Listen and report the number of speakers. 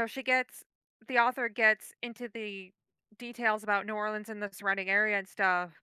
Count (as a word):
one